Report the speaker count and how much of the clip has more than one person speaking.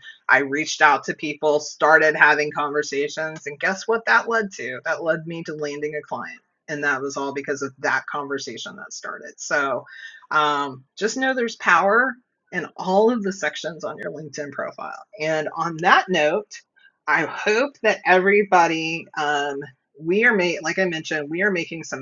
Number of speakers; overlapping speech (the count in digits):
1, no overlap